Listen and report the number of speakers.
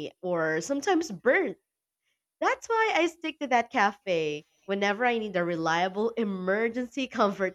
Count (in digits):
1